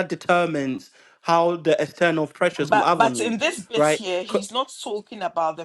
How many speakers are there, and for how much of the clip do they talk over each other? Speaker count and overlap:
2, about 26%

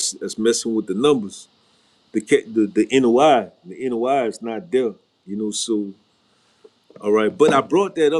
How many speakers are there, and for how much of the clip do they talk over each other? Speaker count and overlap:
1, no overlap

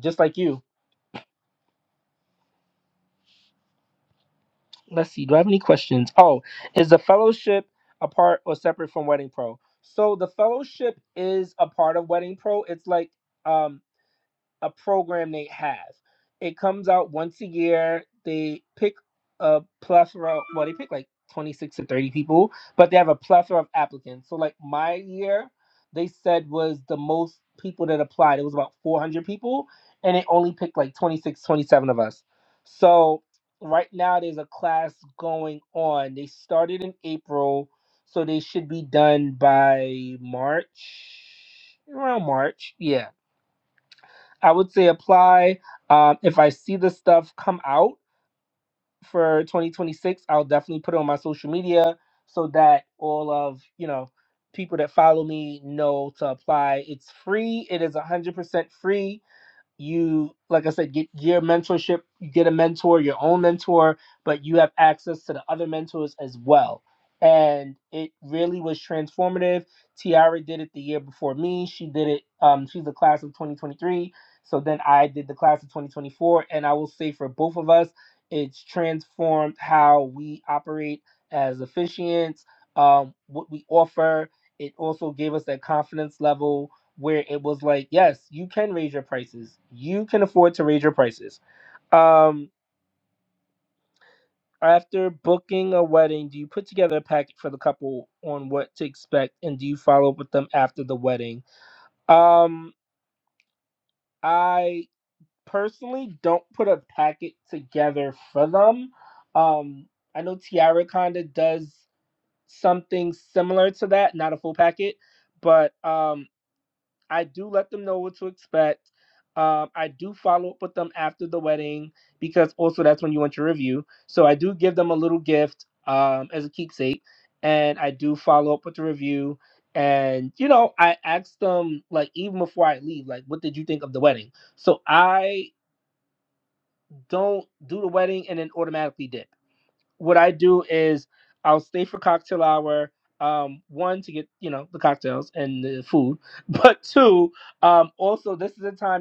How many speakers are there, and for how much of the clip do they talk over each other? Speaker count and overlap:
1, no overlap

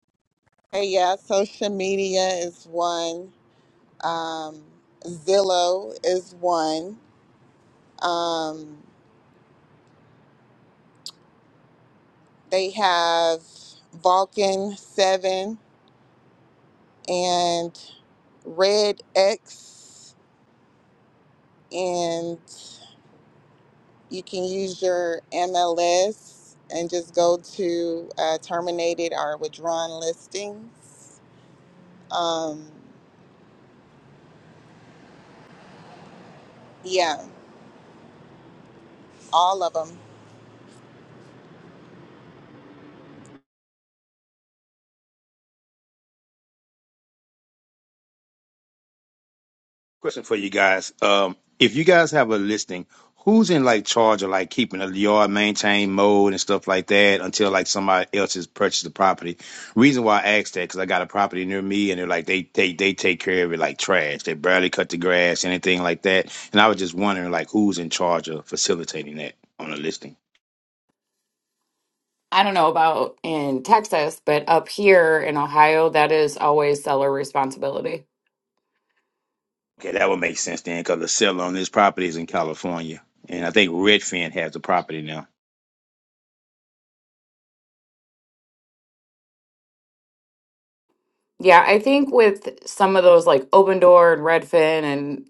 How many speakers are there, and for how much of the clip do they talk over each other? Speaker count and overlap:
3, no overlap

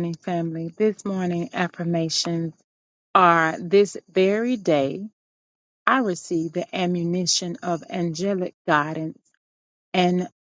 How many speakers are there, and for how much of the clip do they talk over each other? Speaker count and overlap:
1, no overlap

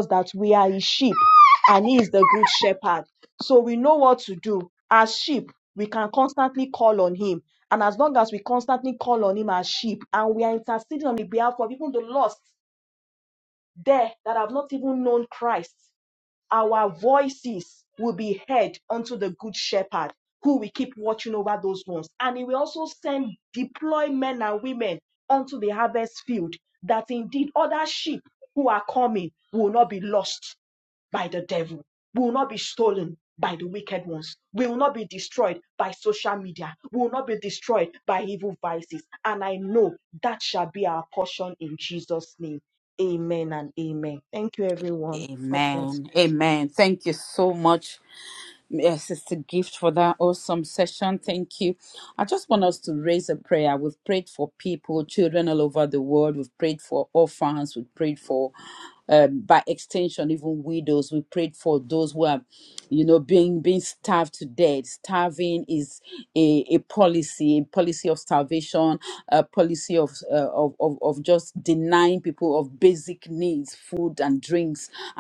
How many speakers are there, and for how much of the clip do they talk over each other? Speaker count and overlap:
2, about 1%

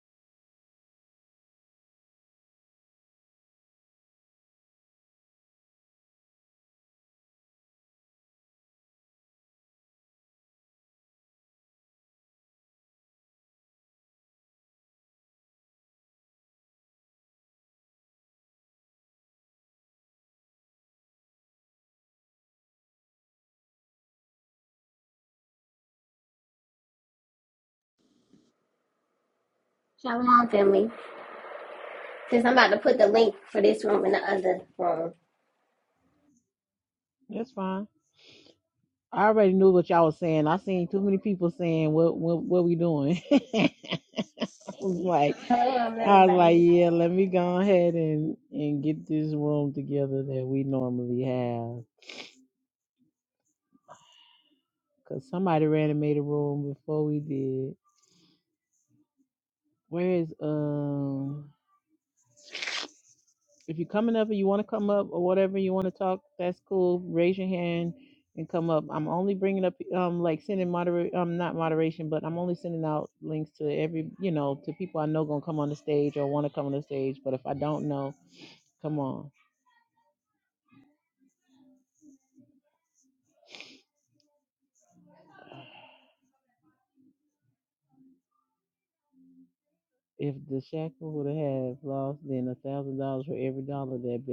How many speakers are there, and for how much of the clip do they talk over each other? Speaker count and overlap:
2, about 1%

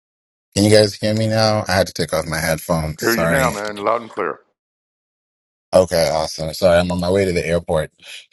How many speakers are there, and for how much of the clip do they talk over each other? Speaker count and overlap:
2, about 7%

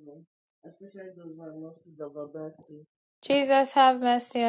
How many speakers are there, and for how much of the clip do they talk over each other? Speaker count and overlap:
2, no overlap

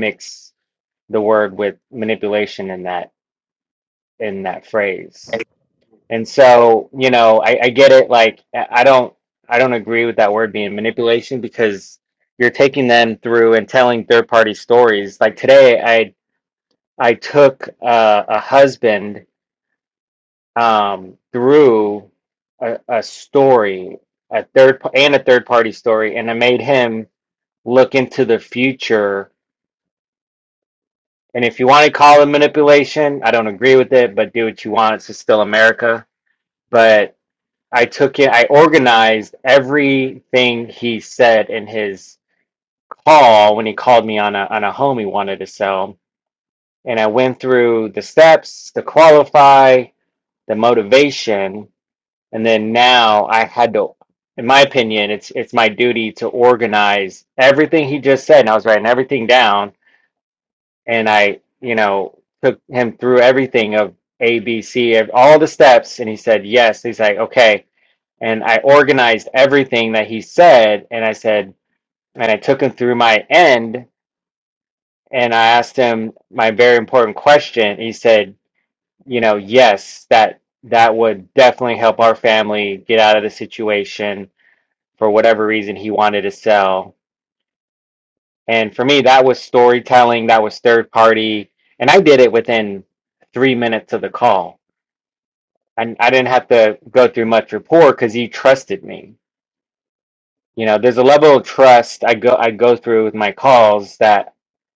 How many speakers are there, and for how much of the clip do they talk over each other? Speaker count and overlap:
1, no overlap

